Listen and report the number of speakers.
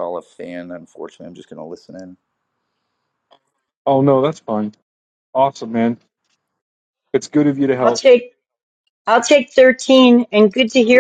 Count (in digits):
3